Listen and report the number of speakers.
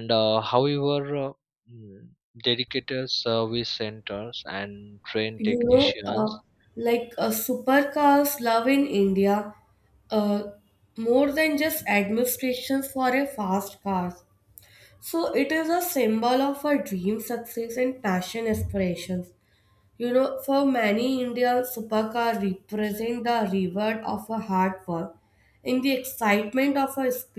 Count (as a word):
two